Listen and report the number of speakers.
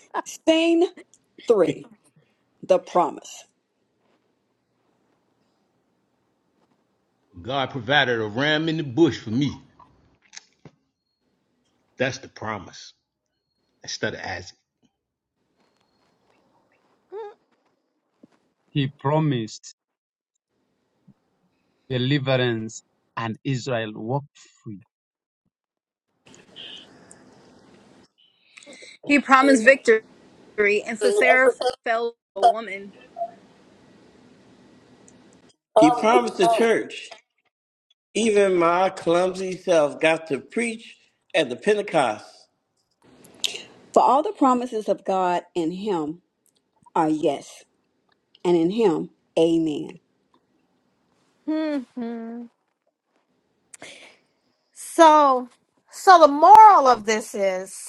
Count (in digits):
6